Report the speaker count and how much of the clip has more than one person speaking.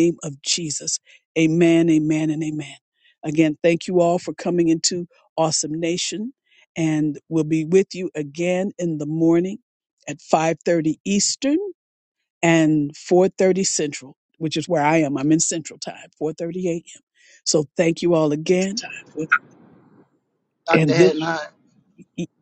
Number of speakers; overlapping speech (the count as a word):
two, about 3%